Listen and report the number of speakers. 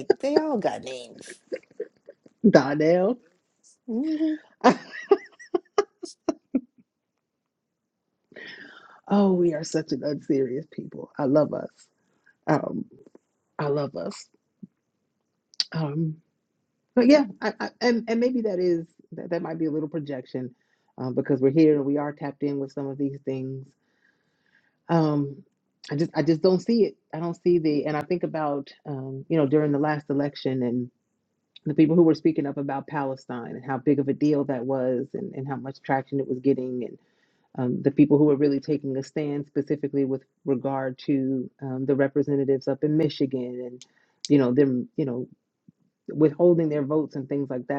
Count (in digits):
2